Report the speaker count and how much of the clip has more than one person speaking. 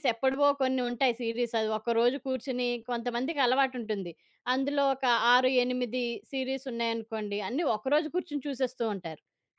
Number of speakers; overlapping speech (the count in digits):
1, no overlap